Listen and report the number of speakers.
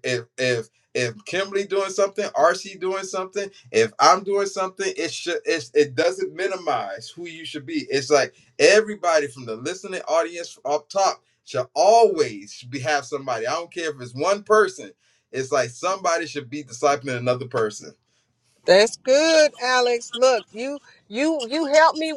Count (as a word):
two